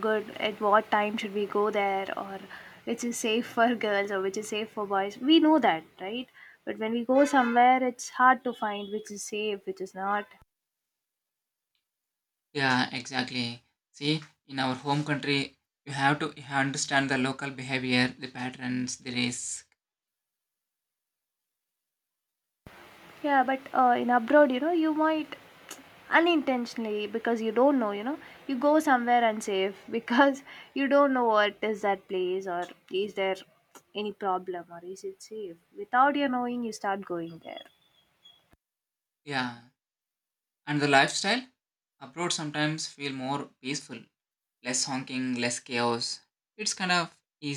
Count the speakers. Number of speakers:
two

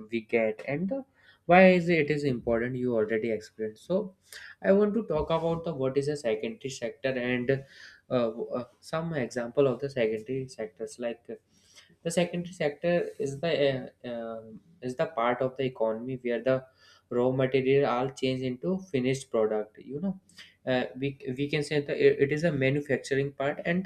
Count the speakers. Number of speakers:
one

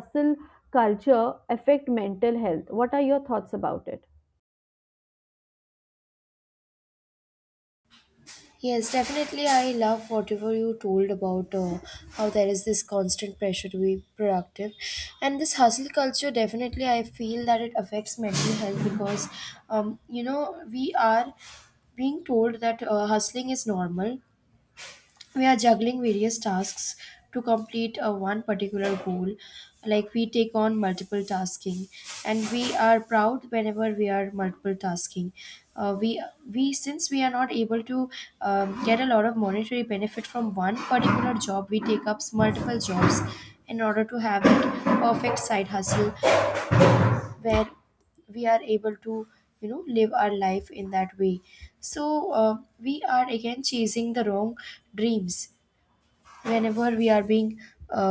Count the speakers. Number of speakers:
two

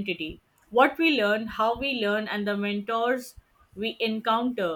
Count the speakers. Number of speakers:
one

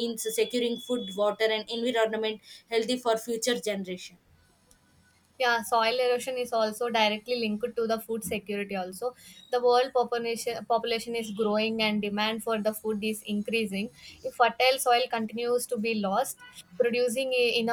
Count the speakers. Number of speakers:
two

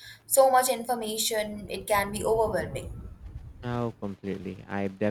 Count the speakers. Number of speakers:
two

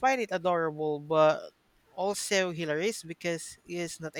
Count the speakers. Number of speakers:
one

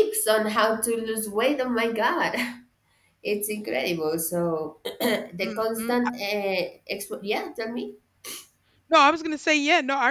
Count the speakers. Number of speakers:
two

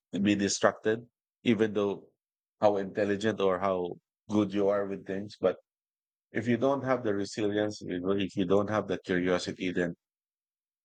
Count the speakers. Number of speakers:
one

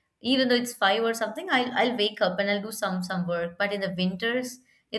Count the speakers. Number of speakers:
one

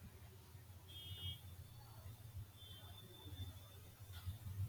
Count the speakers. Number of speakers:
zero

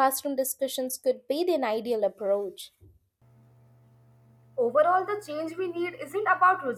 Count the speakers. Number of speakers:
two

